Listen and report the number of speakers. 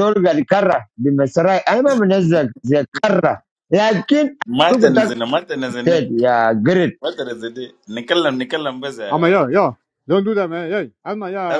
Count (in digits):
3